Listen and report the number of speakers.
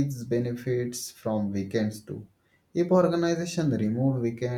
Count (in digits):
1